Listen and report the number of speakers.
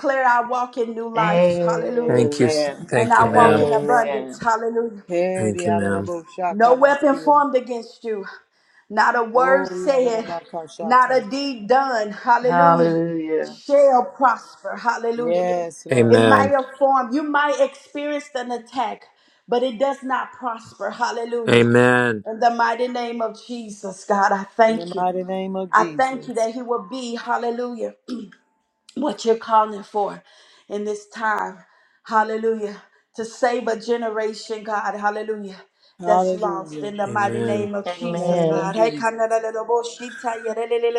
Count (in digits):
4